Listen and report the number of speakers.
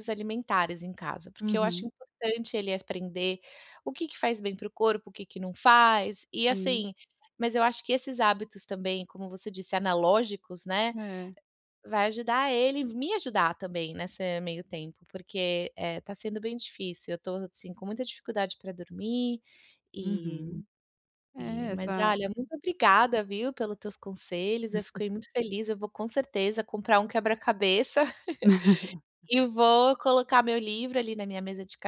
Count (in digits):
2